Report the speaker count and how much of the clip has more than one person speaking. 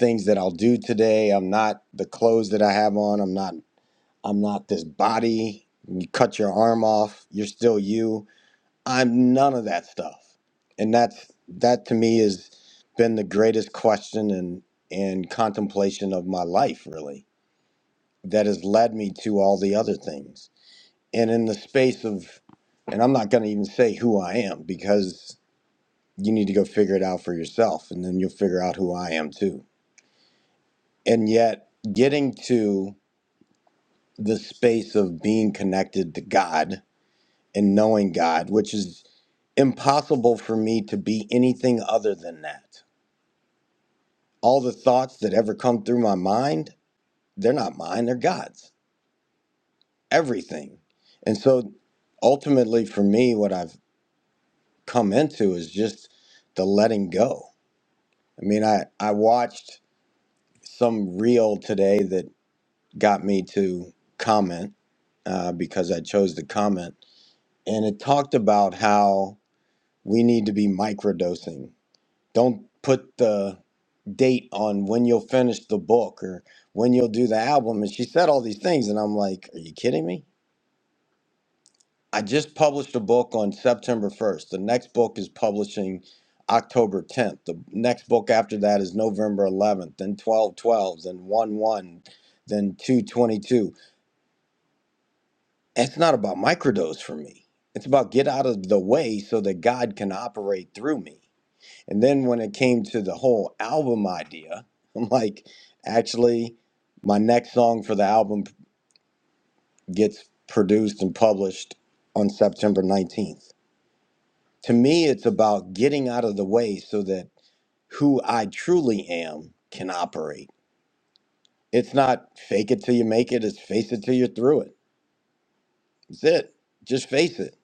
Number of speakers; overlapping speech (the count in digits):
1, no overlap